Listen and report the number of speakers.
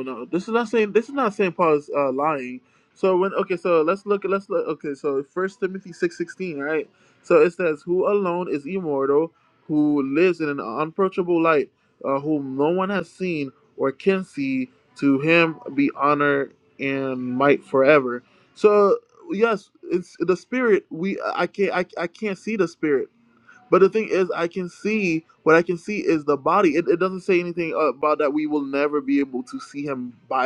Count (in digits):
1